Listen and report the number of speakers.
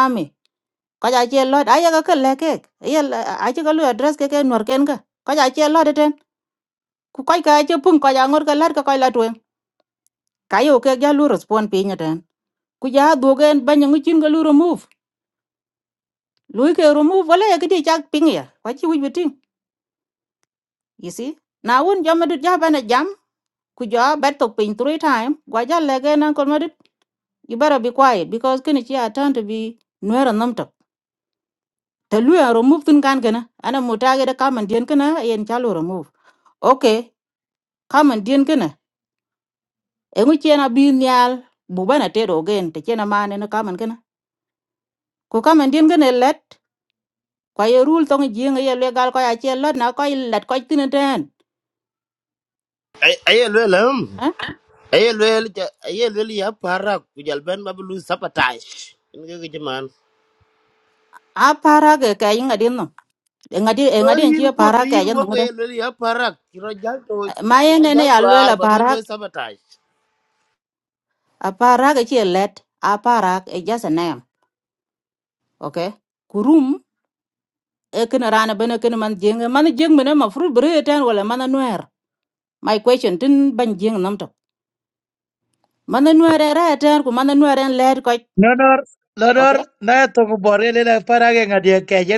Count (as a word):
three